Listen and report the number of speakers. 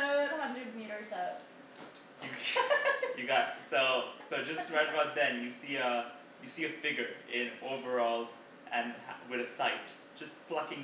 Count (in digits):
2